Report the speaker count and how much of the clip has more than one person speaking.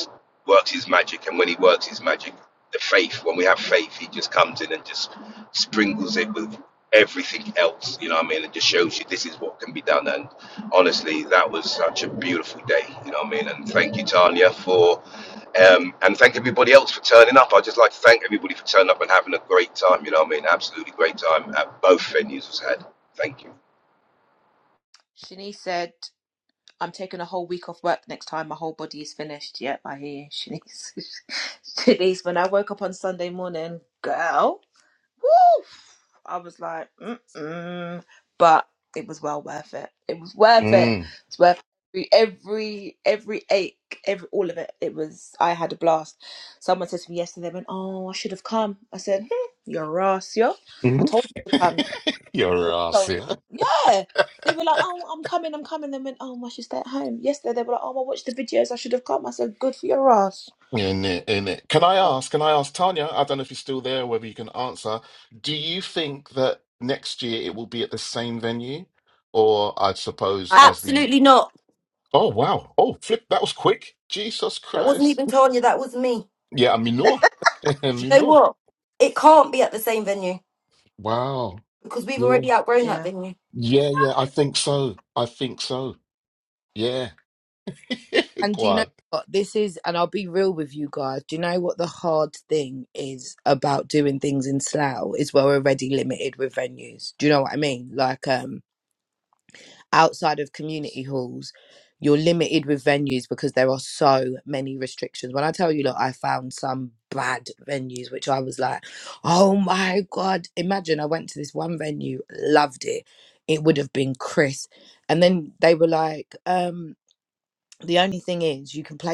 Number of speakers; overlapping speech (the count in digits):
5, about 2%